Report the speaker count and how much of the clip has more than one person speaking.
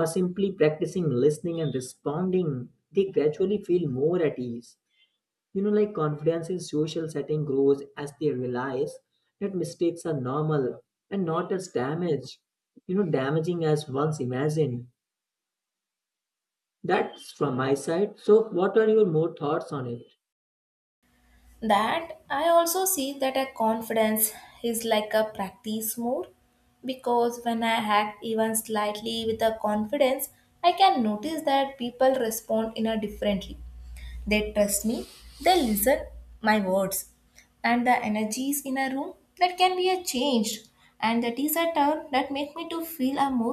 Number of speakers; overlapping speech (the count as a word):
two, no overlap